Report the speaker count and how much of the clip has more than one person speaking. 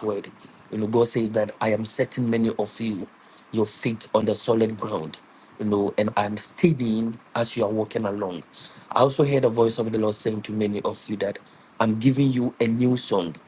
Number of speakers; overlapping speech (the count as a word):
one, no overlap